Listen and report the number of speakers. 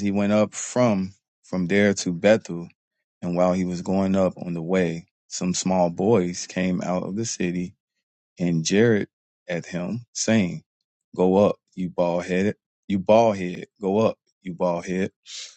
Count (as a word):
one